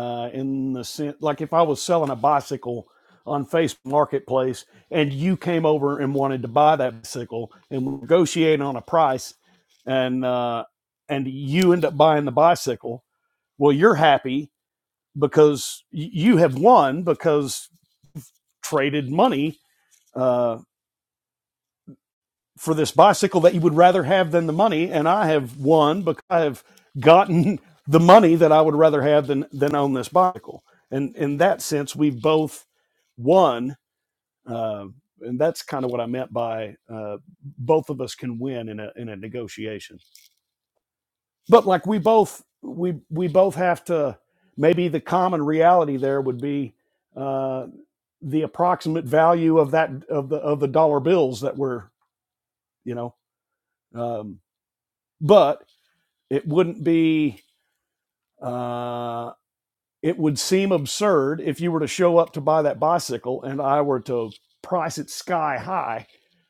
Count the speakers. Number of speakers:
1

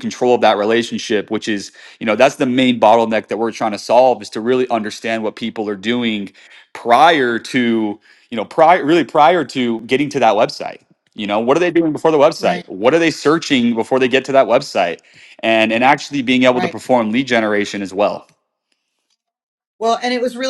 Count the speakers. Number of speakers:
2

